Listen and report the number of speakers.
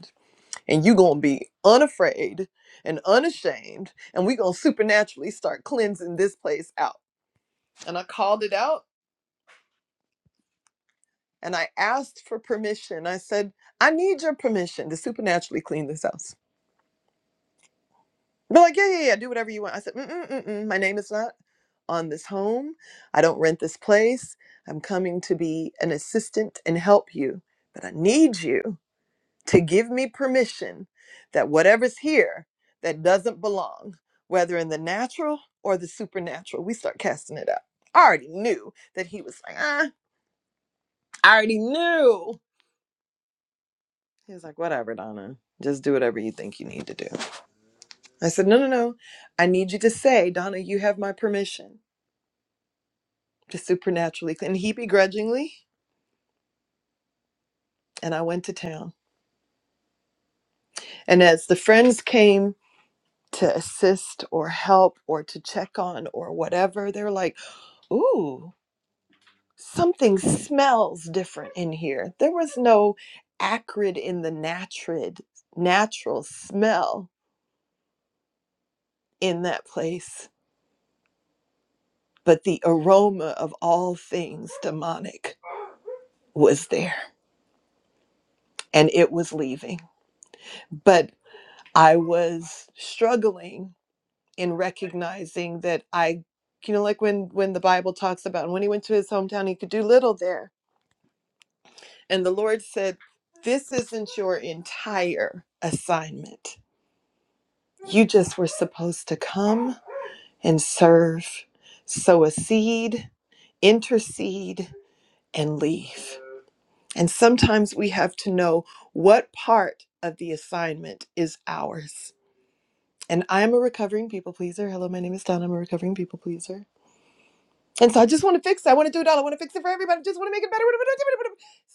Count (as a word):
one